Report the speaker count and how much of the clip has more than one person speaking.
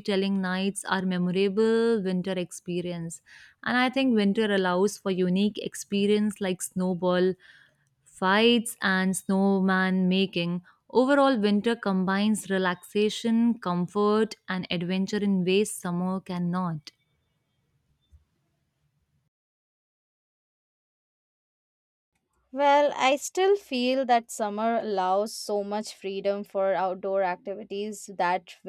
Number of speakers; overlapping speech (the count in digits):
2, no overlap